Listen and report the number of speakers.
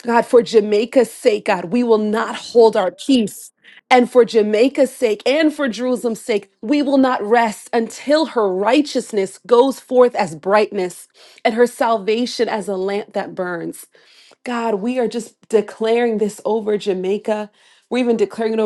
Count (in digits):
1